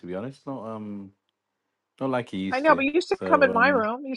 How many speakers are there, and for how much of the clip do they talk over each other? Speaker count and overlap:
2, about 23%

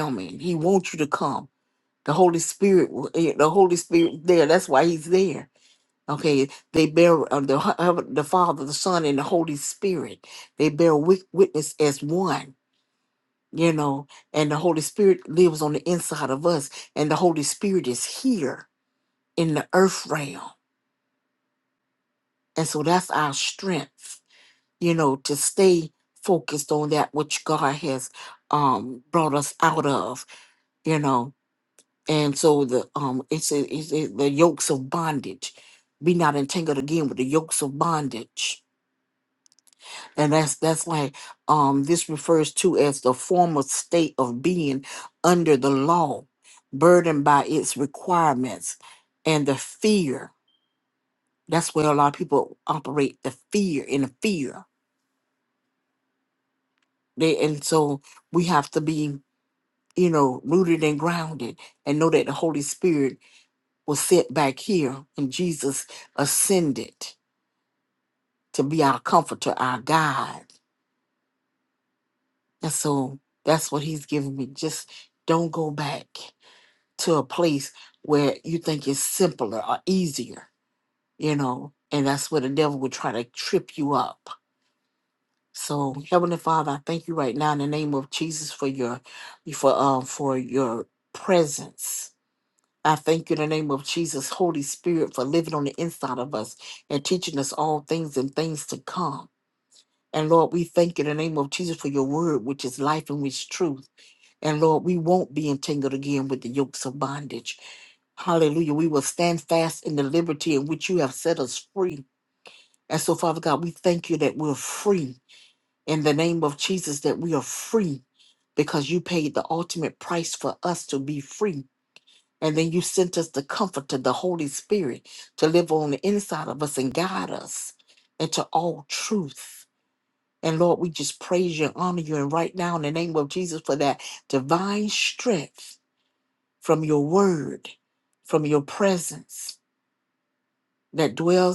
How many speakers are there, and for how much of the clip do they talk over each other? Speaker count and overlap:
1, no overlap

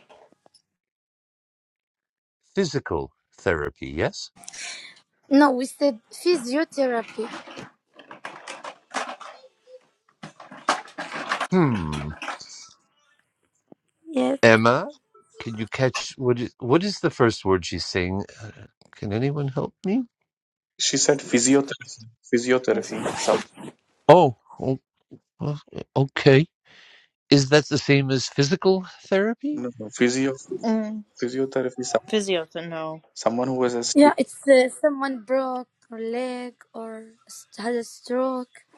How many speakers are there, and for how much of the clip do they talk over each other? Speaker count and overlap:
4, about 1%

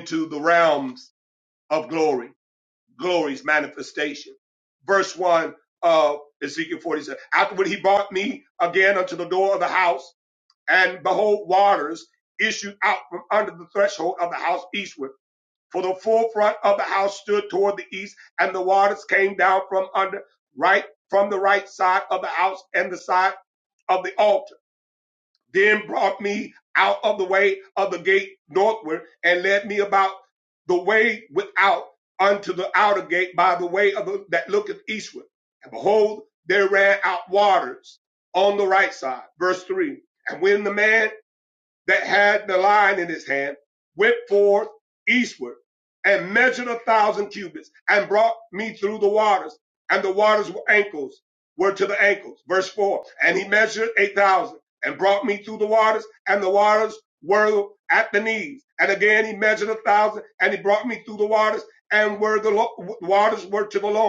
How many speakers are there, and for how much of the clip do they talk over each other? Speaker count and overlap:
1, no overlap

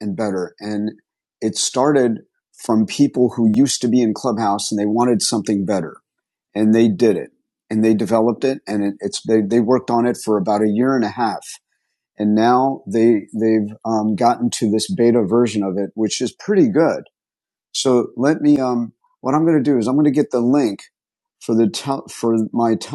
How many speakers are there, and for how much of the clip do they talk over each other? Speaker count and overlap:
1, no overlap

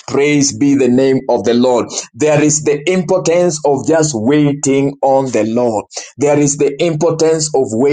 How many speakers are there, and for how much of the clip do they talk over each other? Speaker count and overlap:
1, no overlap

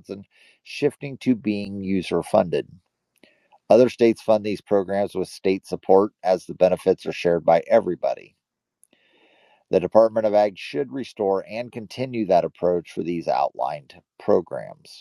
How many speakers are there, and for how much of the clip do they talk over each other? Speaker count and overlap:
1, no overlap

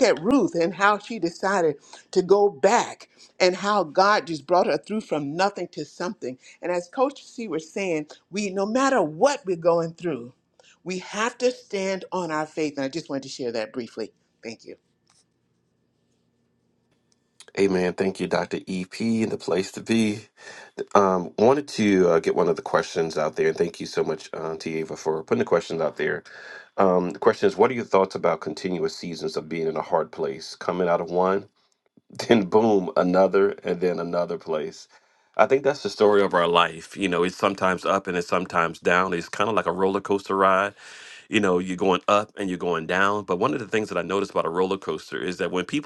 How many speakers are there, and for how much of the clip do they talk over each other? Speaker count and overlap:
2, no overlap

